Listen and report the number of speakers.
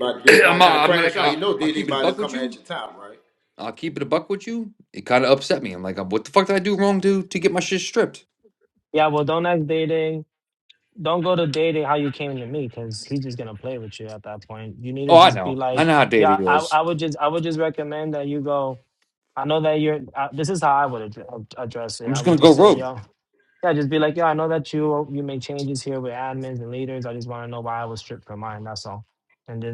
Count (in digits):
3